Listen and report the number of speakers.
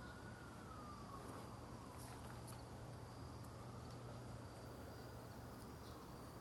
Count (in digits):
0